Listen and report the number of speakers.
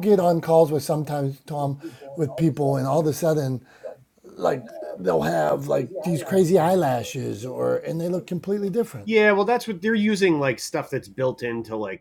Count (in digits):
2